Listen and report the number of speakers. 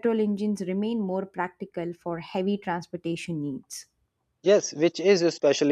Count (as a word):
two